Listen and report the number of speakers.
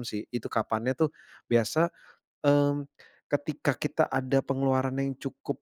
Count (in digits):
1